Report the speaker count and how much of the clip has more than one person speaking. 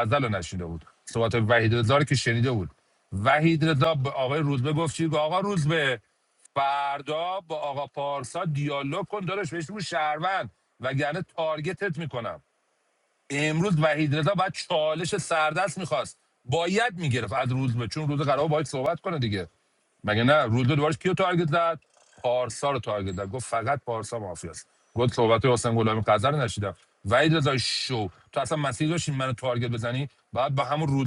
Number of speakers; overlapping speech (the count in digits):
1, no overlap